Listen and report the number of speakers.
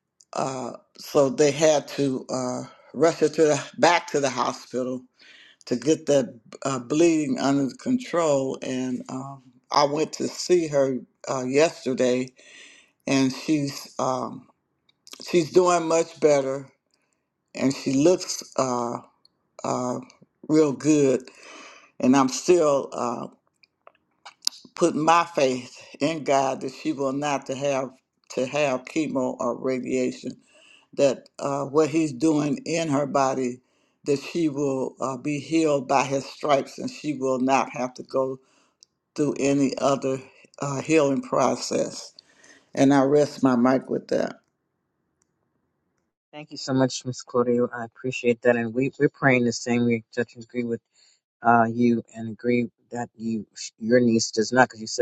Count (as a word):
two